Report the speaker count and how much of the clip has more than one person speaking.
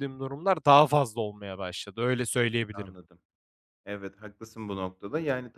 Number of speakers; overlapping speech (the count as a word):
two, about 3%